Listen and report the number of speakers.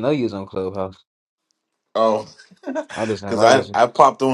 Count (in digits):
2